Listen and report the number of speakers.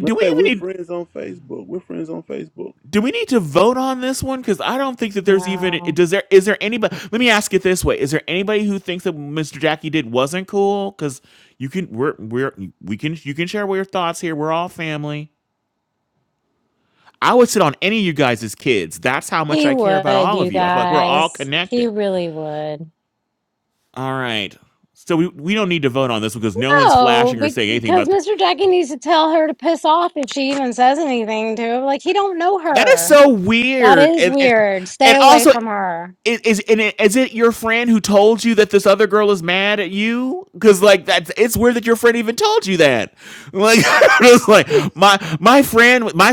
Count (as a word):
three